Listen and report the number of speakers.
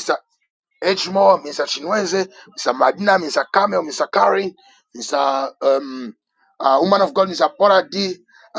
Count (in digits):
1